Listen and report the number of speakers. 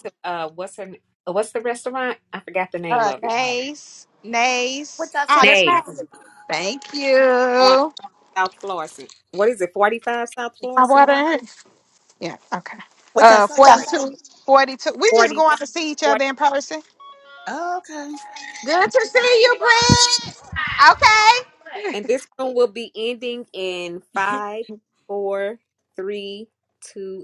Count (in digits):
3